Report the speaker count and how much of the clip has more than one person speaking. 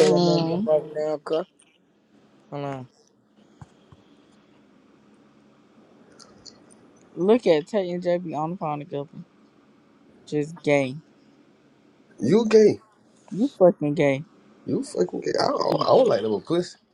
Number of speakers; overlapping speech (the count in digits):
3, about 4%